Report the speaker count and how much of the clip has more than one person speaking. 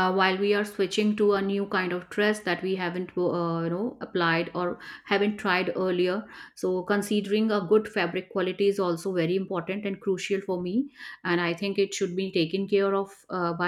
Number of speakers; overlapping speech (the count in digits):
1, no overlap